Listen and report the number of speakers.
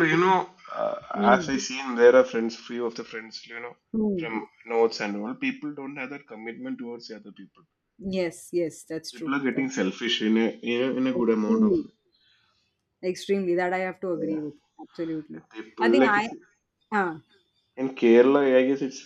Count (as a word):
two